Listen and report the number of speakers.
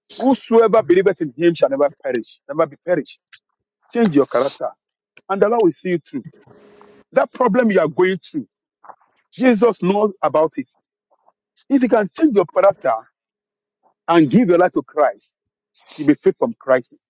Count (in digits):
1